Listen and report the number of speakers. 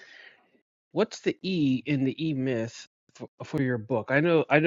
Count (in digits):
1